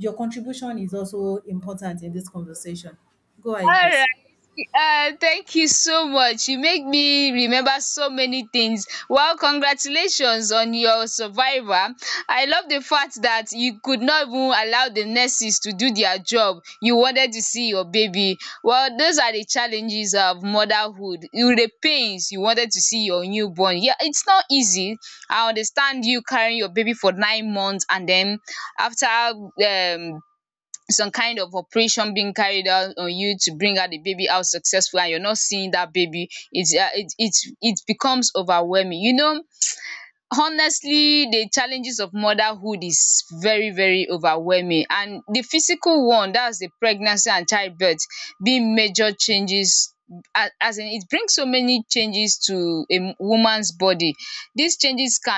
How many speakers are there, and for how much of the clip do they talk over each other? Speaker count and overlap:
two, about 1%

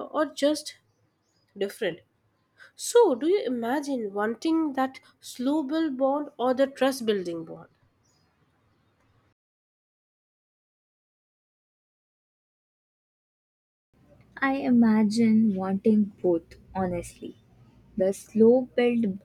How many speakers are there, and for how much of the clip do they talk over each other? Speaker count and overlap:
two, no overlap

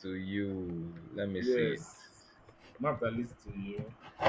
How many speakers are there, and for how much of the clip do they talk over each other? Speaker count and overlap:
two, about 9%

